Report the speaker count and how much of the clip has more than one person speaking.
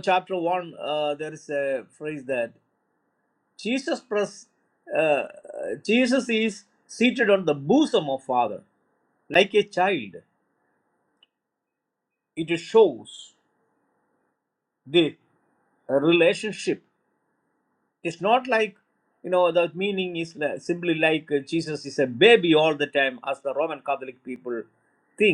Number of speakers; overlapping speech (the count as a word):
one, no overlap